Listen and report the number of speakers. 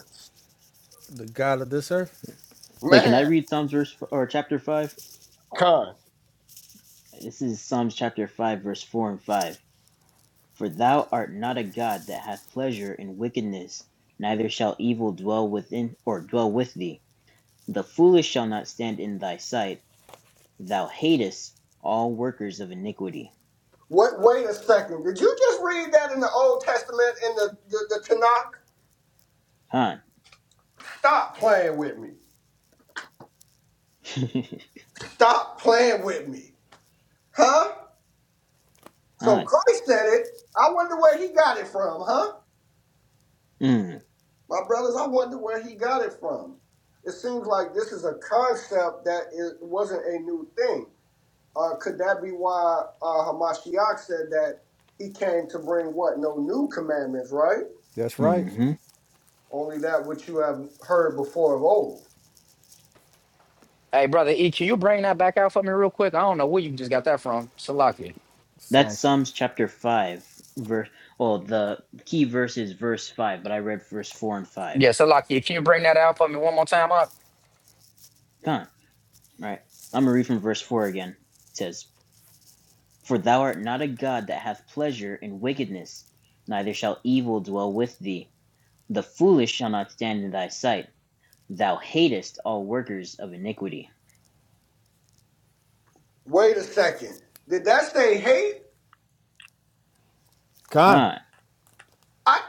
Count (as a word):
four